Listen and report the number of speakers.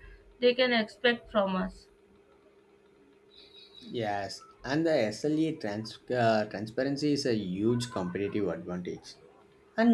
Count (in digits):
2